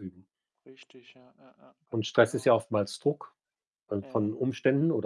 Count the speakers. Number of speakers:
two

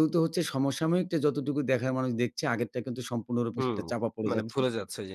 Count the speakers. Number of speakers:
two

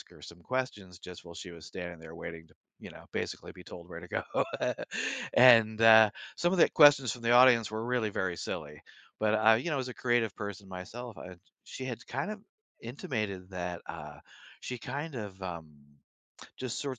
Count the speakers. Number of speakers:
one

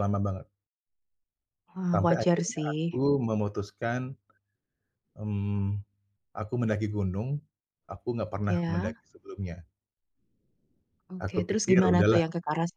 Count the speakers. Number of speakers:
two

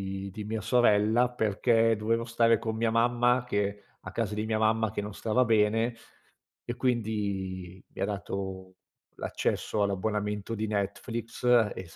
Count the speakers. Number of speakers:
one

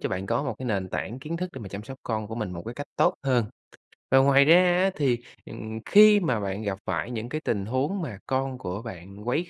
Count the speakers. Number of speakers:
one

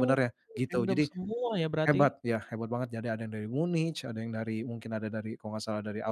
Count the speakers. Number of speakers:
two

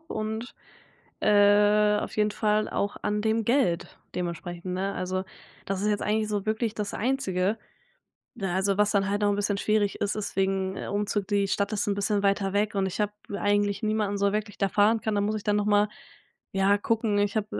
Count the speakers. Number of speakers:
one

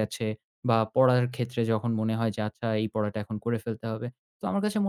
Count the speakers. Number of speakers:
one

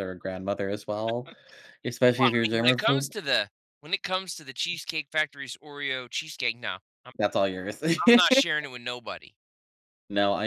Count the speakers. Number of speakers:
two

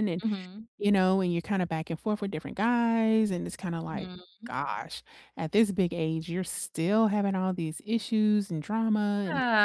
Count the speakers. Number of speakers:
two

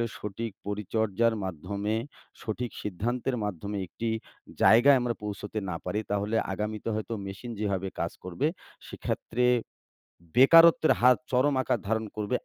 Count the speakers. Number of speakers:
one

